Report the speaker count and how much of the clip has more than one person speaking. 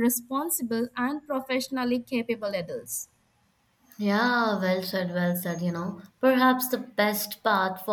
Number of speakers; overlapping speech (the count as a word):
two, no overlap